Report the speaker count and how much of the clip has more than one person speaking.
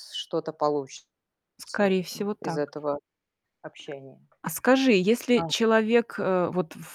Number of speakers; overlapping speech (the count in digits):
2, about 10%